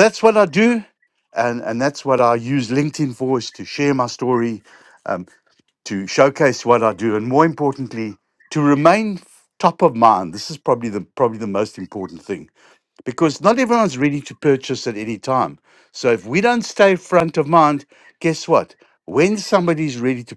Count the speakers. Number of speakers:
1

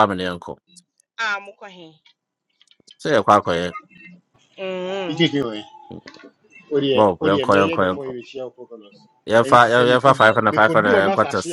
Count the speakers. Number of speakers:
3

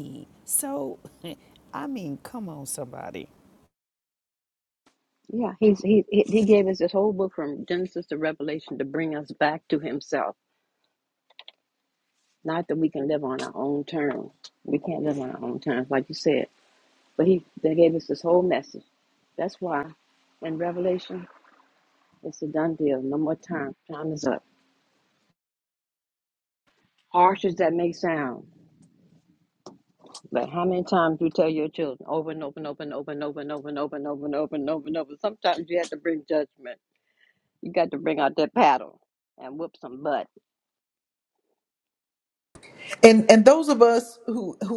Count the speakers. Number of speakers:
3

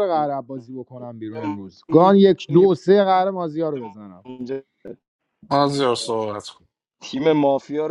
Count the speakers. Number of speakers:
3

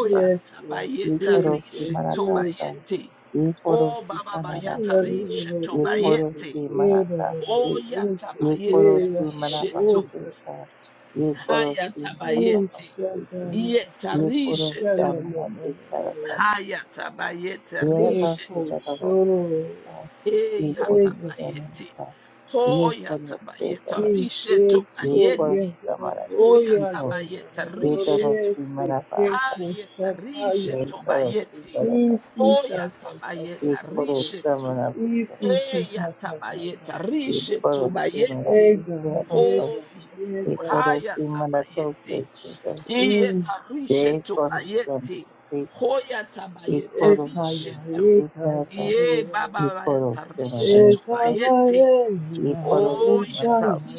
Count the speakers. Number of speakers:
3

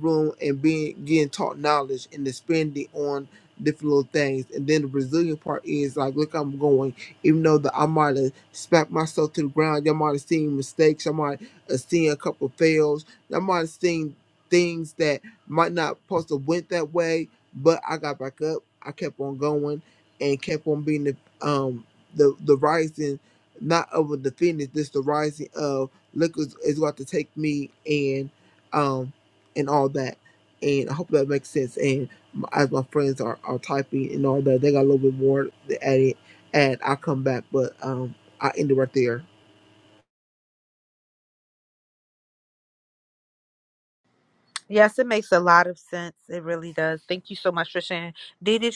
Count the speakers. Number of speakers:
2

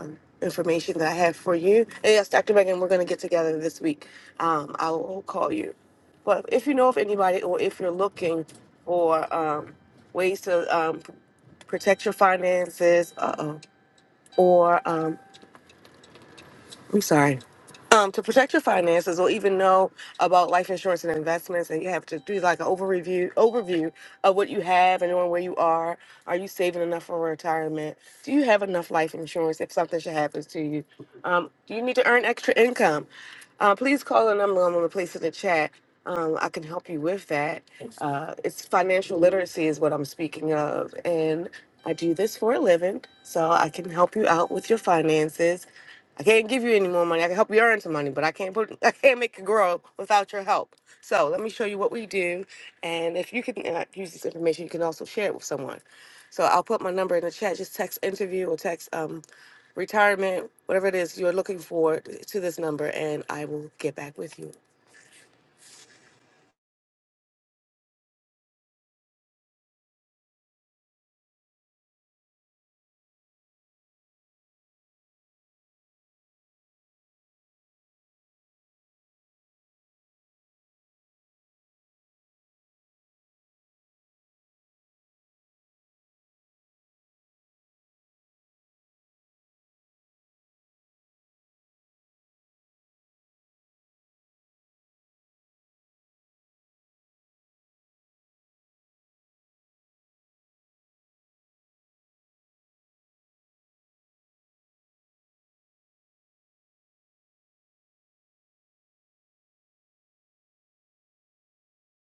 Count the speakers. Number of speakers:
1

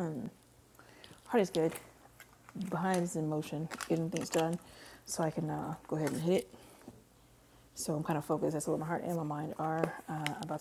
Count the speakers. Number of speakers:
1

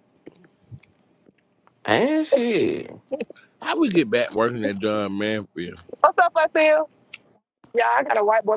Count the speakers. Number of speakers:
3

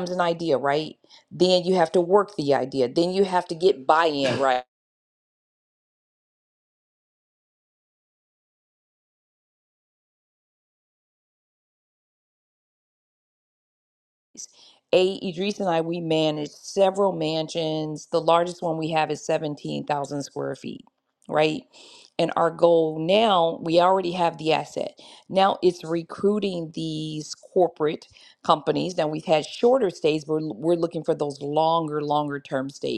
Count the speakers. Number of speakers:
1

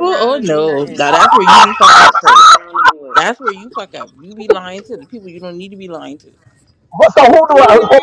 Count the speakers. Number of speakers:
3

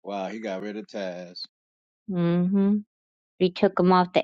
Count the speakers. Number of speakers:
2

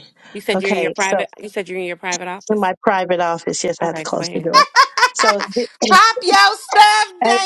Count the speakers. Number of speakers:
3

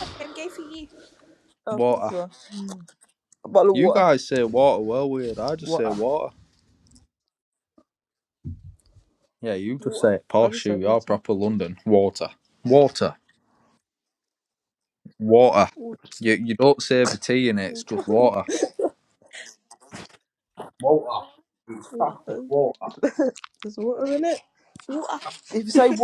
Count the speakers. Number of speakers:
3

